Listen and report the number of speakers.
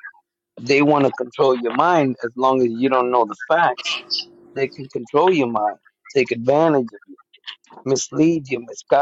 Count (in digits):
1